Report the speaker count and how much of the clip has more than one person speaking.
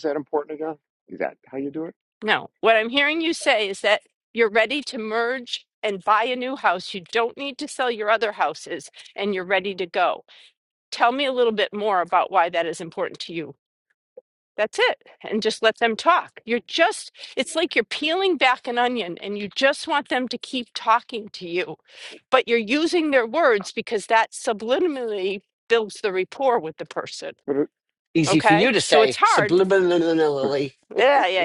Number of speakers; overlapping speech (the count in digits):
3, about 4%